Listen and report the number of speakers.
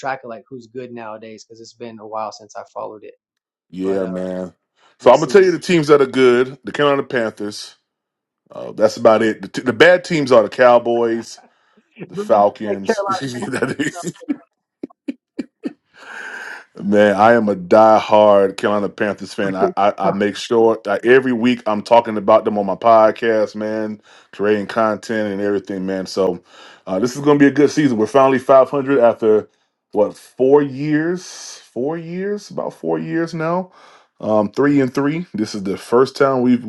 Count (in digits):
2